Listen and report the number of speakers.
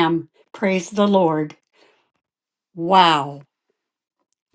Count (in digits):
1